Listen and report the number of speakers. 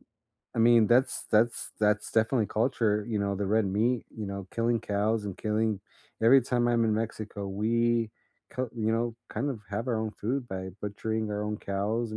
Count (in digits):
1